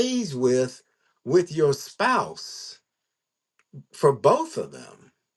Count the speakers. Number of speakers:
1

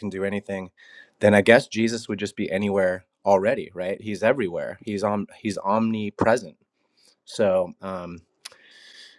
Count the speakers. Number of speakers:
1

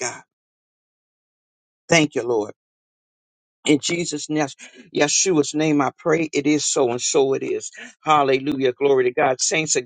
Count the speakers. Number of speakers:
1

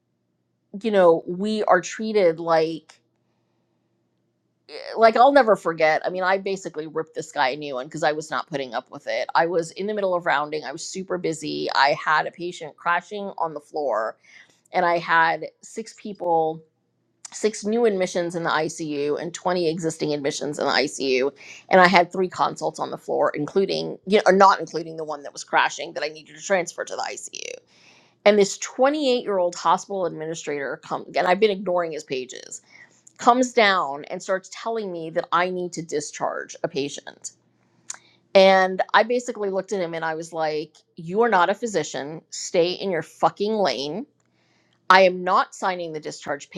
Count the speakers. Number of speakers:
1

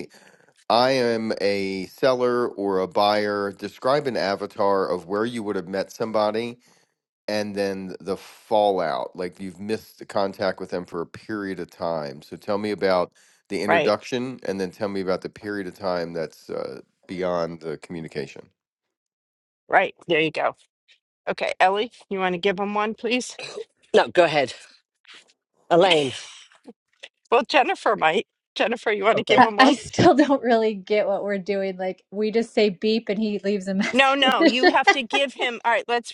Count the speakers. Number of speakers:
4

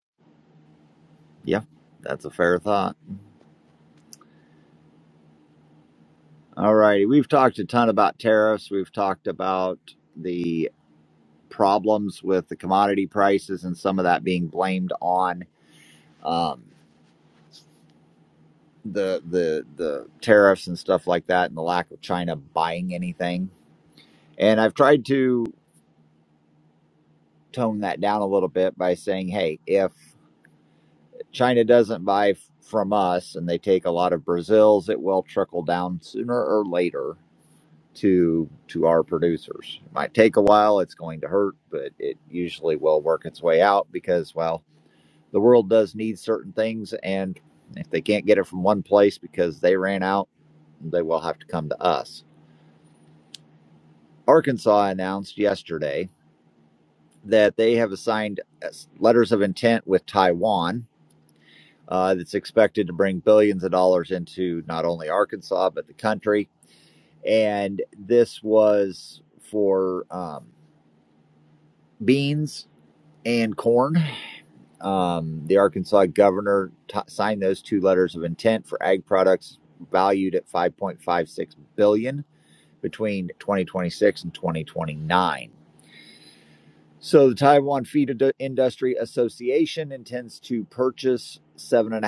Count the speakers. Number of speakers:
1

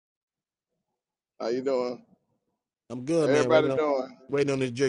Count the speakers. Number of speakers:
2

